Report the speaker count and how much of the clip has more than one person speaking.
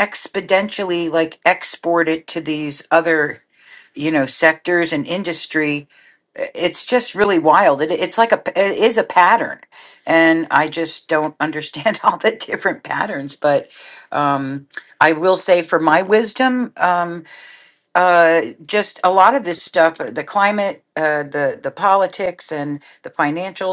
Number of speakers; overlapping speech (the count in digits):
1, no overlap